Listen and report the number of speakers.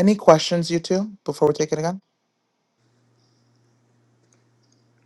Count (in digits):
1